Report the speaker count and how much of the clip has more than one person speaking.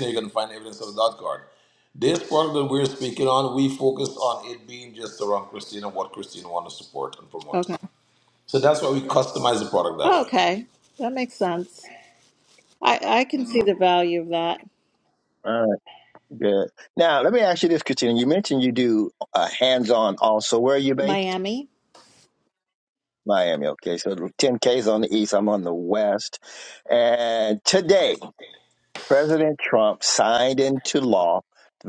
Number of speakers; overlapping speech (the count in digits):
3, about 2%